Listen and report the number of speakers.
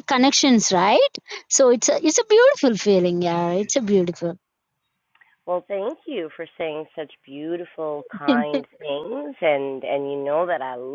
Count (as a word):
two